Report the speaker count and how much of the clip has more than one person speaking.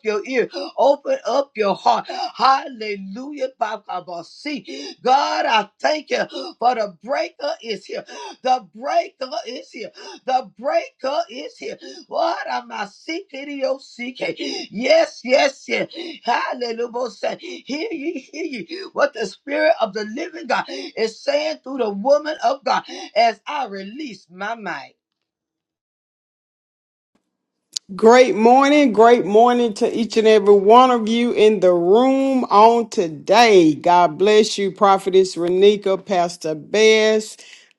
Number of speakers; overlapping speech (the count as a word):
two, no overlap